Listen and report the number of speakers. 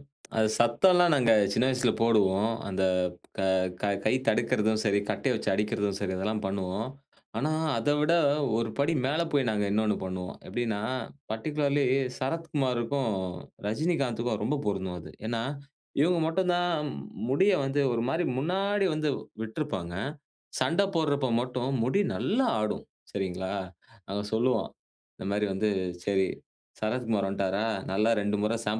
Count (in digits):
1